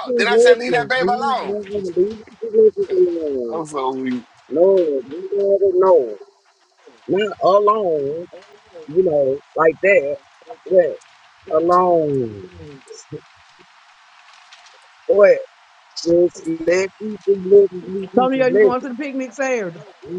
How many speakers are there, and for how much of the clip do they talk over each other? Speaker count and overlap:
three, about 11%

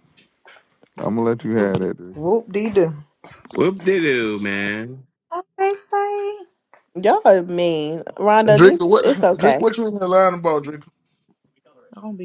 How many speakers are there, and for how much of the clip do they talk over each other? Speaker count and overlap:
five, about 9%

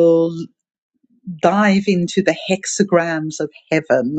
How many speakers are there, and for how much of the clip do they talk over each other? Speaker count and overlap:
one, no overlap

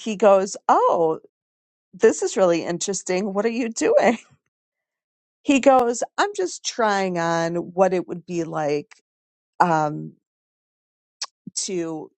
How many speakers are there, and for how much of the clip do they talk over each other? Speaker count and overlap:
one, no overlap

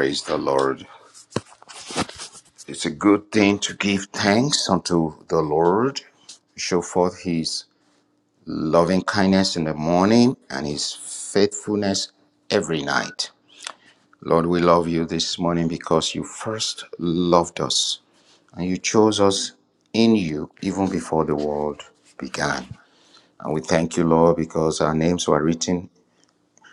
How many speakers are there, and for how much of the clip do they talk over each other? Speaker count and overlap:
one, no overlap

